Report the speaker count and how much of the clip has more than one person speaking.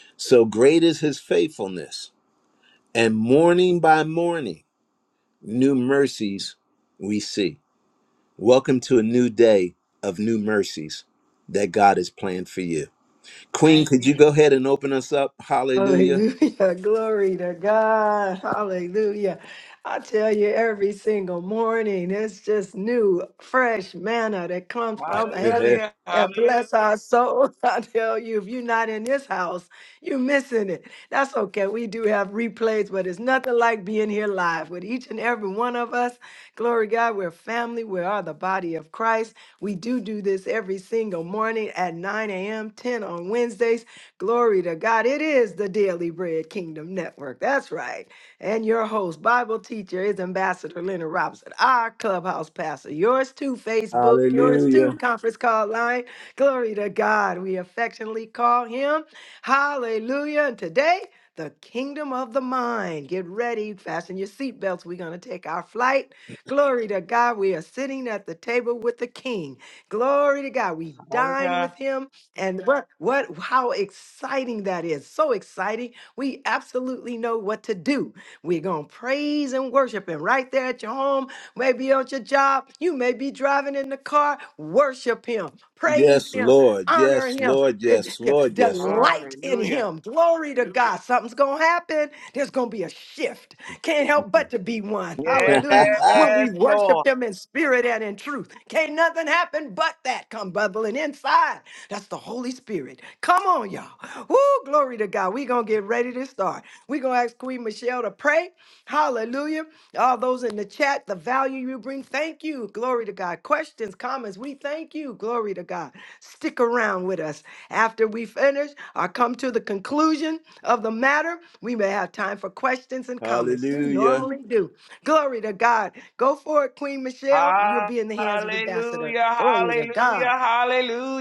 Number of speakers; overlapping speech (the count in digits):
3, about 8%